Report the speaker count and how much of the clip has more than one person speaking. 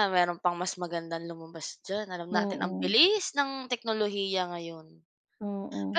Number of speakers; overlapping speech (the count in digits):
2, about 11%